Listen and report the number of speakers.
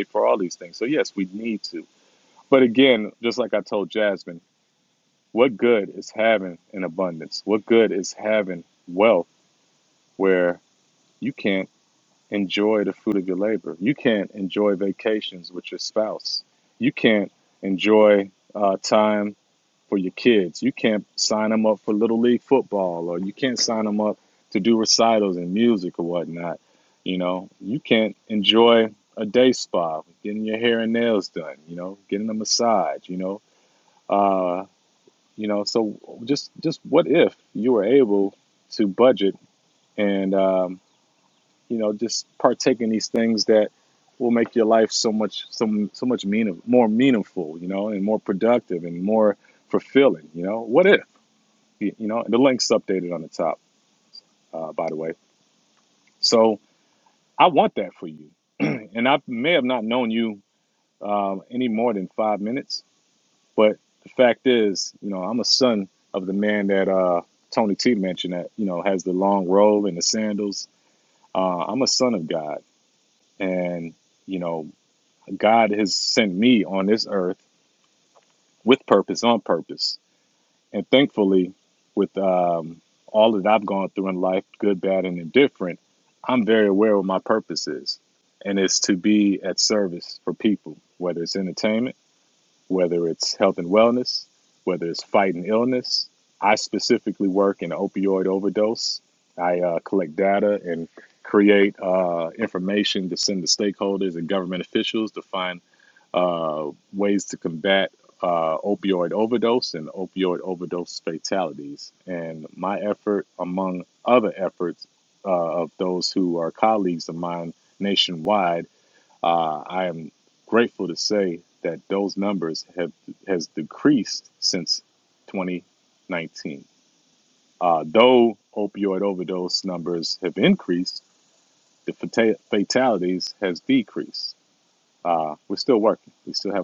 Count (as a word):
one